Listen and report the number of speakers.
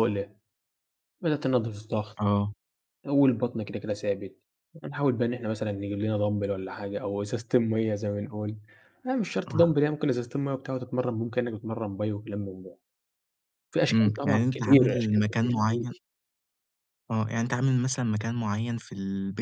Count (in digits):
2